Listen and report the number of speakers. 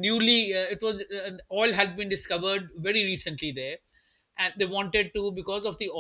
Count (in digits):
1